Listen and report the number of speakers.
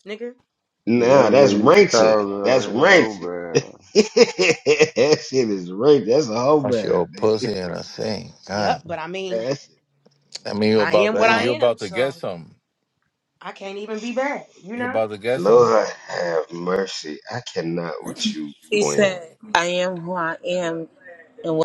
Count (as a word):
five